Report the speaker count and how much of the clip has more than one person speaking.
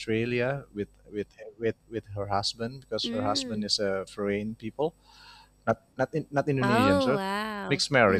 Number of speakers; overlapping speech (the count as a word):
two, about 20%